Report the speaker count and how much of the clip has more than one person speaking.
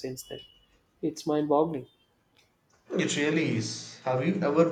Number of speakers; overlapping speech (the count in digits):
2, no overlap